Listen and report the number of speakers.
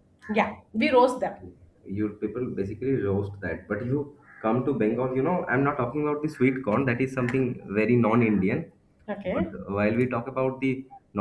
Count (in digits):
2